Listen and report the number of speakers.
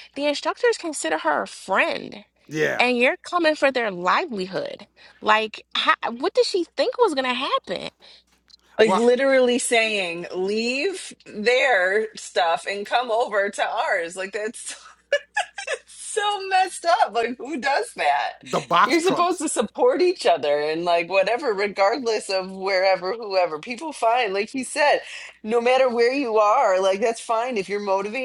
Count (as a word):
three